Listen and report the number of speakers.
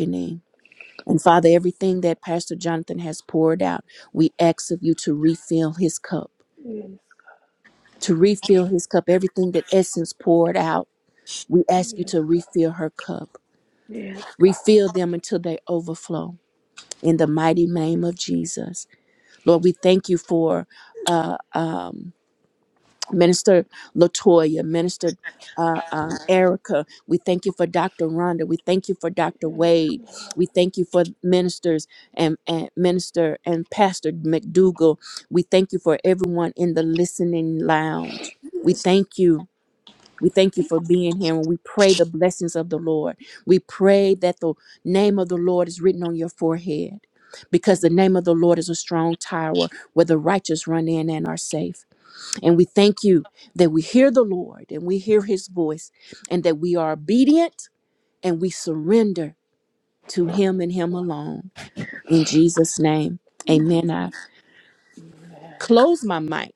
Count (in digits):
2